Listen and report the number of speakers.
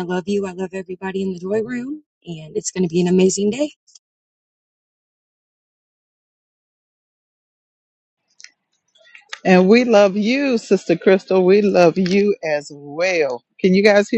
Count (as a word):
two